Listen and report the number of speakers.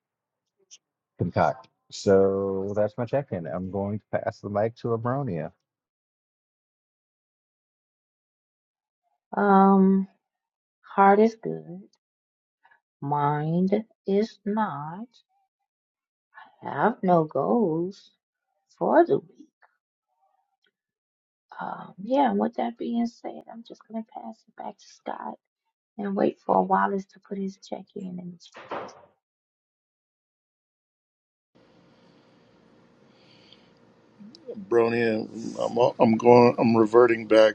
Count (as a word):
three